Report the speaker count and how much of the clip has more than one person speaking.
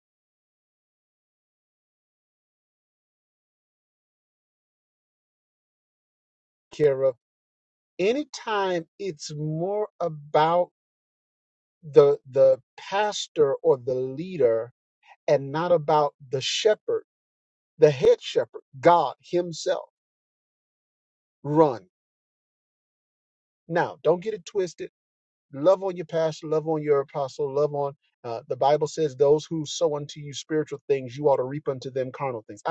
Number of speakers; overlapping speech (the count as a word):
one, no overlap